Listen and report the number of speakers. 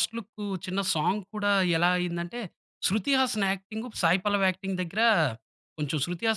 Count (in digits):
1